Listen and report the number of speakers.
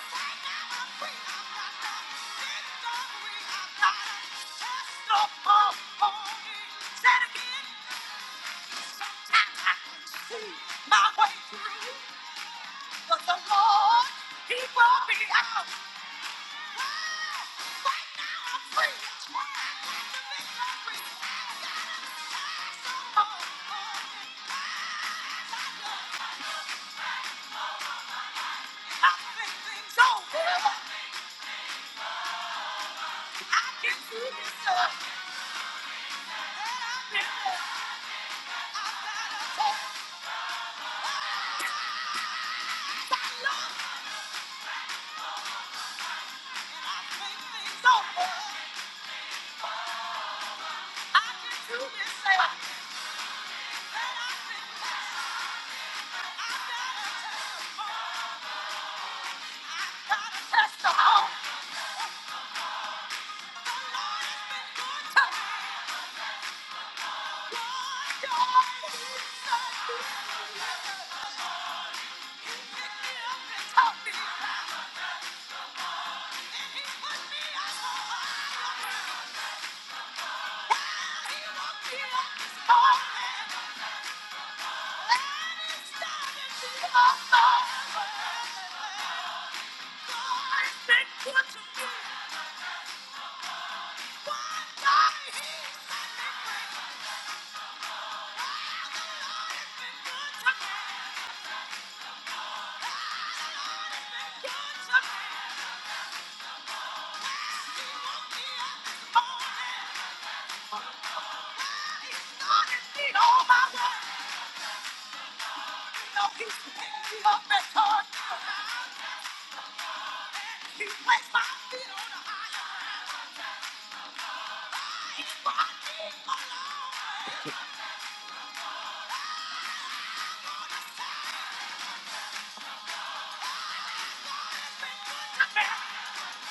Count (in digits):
1